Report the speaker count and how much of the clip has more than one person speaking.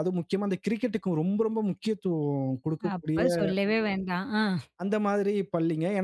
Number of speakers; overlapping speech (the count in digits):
2, about 6%